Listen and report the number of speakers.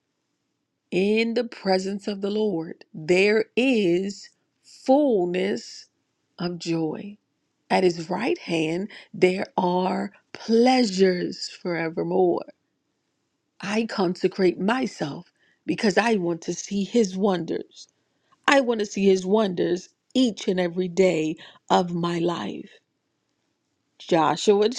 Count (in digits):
1